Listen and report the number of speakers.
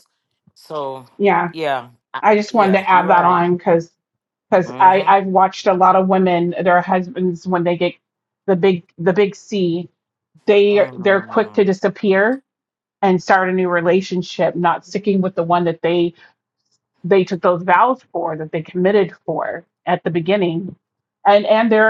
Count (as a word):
two